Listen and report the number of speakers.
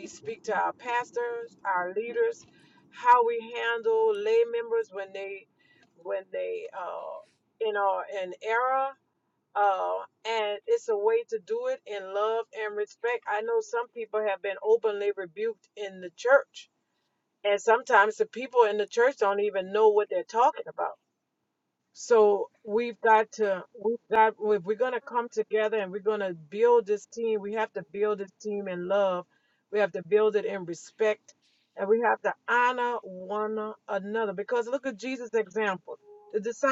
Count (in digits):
1